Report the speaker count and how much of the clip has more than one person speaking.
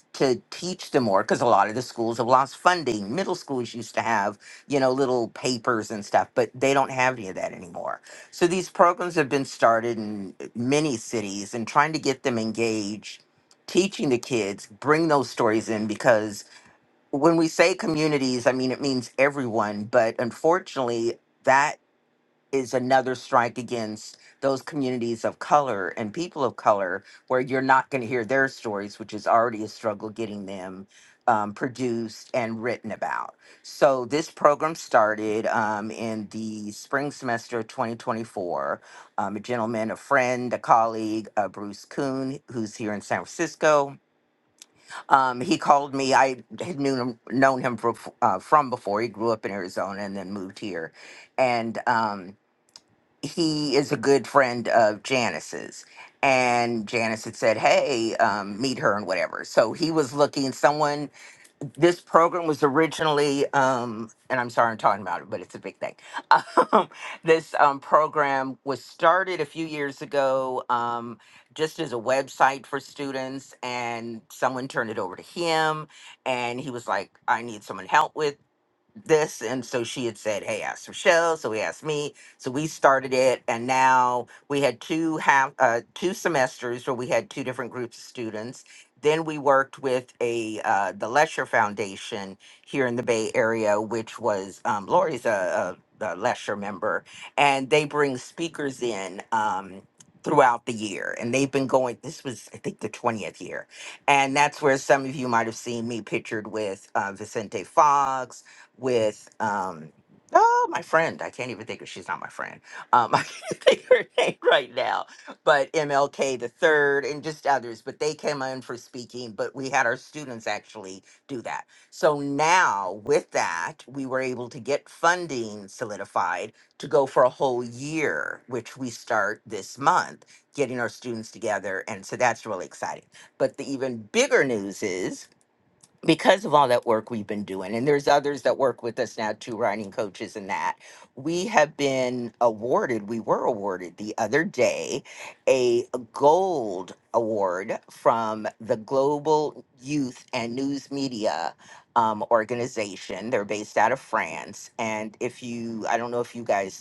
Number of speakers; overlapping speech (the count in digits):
1, no overlap